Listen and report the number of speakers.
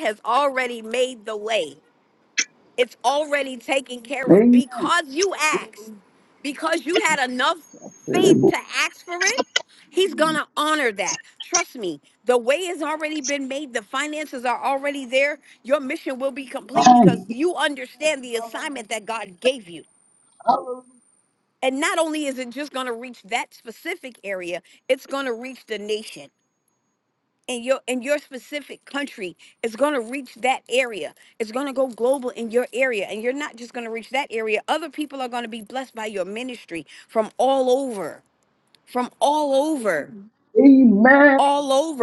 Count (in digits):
2